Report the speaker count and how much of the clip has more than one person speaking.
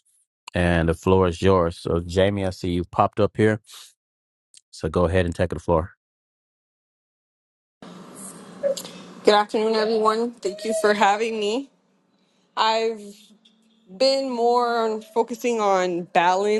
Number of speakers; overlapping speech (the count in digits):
2, no overlap